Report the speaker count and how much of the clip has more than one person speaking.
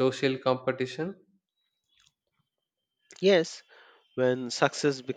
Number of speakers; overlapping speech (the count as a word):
two, no overlap